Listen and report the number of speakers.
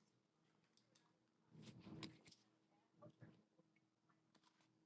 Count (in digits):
0